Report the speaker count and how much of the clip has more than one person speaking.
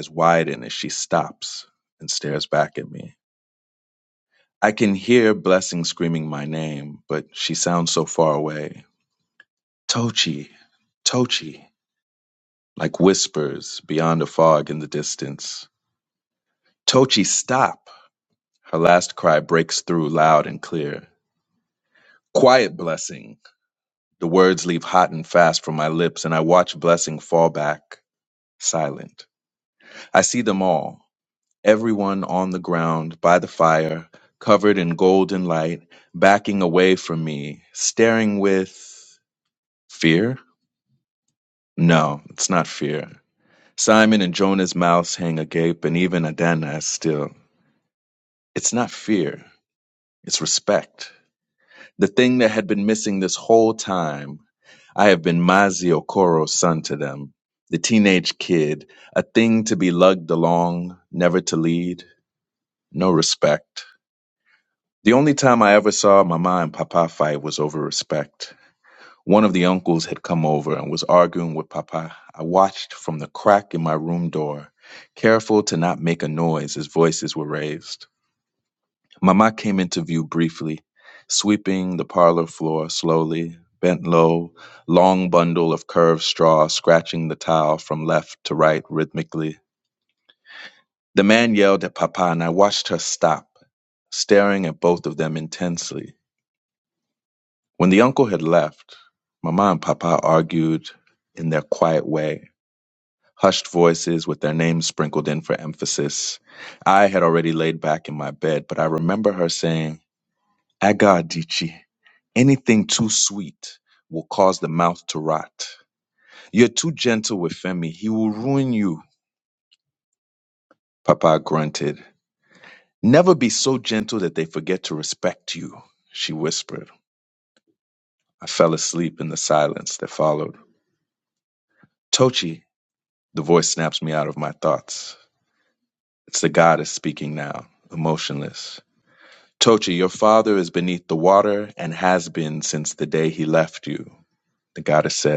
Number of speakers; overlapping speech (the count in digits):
1, no overlap